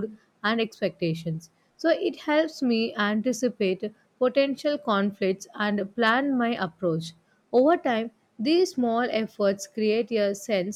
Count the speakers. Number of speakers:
1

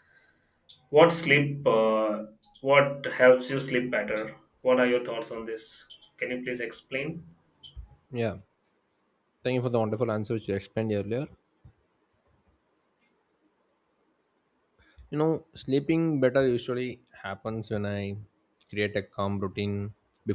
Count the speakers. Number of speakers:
2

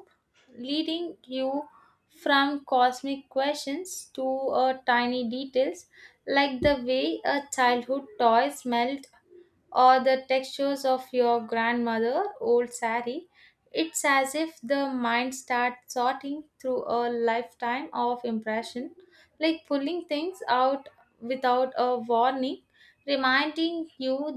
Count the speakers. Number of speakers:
1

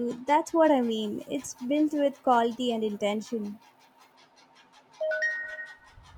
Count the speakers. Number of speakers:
1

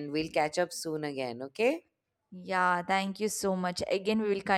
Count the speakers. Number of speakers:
2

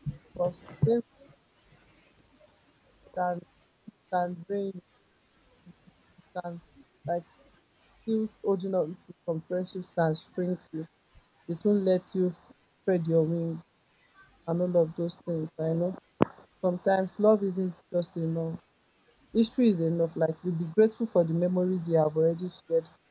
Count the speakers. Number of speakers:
1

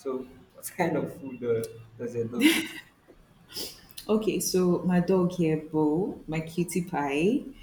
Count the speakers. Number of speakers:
2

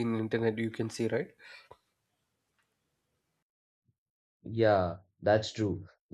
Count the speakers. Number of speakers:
2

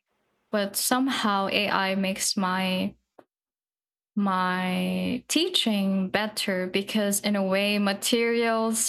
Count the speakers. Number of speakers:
1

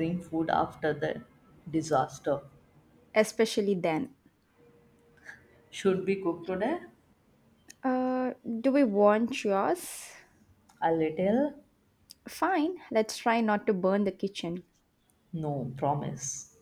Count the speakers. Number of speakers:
2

